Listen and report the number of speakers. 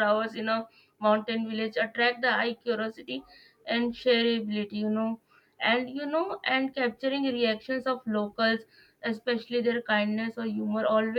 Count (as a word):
one